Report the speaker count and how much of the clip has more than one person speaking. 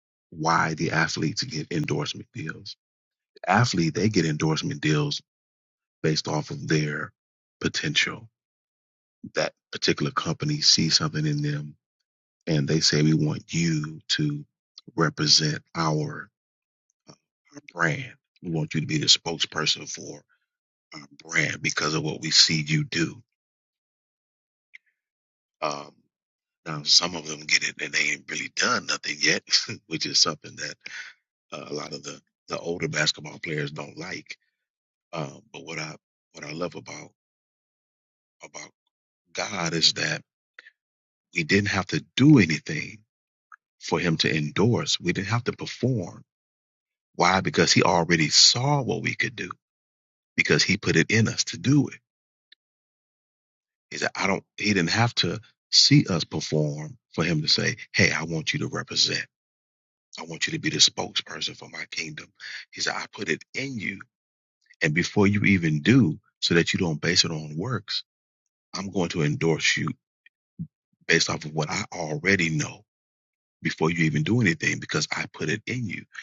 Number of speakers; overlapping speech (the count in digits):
1, no overlap